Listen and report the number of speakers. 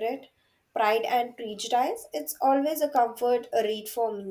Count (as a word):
one